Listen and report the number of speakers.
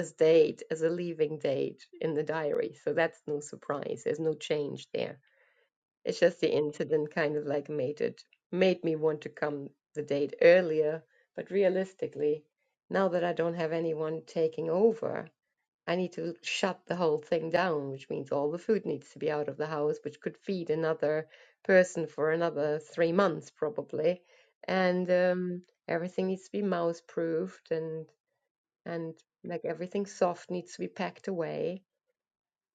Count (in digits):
1